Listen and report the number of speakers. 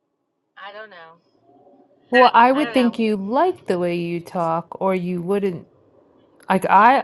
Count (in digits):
2